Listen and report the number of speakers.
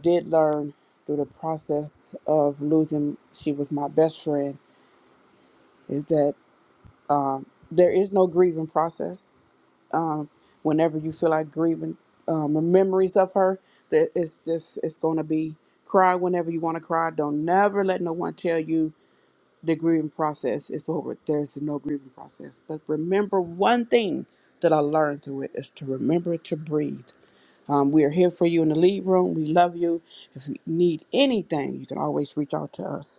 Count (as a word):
one